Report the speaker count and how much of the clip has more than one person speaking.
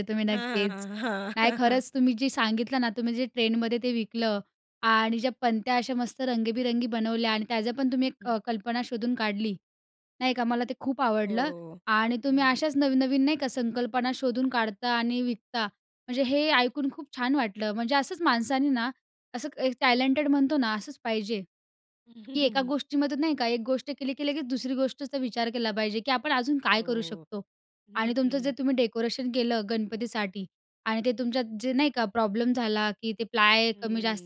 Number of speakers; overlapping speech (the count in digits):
2, about 7%